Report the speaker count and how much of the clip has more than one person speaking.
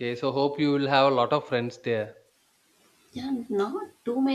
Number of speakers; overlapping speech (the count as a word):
two, no overlap